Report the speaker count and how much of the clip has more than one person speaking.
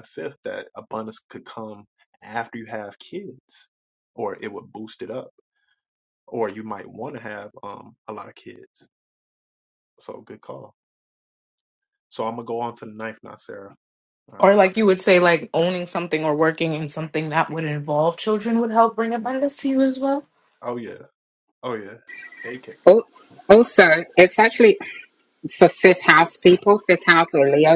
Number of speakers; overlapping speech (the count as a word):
three, about 1%